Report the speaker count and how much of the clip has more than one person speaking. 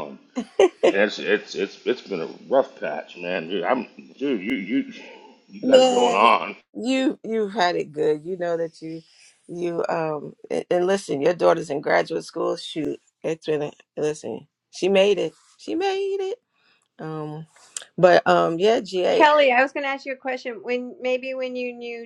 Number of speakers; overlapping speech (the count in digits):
3, about 4%